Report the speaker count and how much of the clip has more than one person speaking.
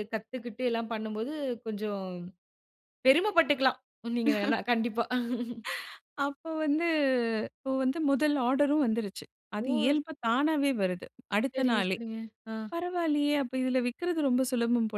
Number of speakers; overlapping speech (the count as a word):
two, about 5%